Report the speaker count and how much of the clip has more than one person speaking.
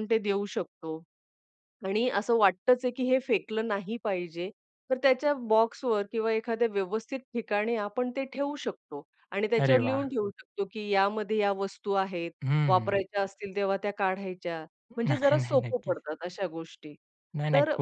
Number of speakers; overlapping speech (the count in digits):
2, about 11%